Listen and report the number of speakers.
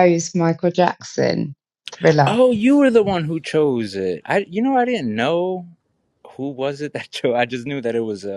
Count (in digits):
2